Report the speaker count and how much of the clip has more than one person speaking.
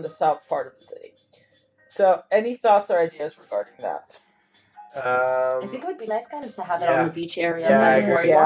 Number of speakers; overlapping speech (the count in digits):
3, about 24%